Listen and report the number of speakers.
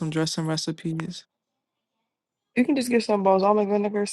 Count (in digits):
2